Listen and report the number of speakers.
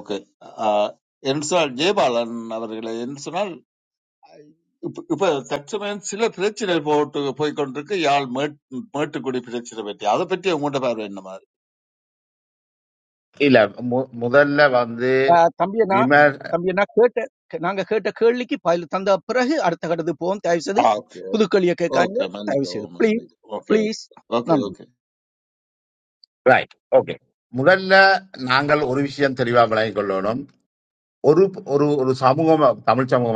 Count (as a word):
three